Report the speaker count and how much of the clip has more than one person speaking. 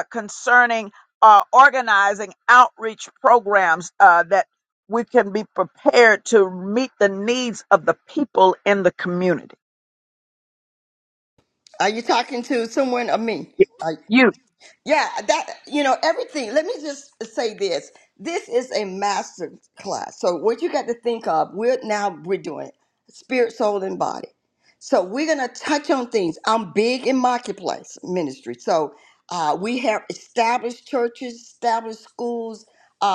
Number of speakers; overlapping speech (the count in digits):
2, no overlap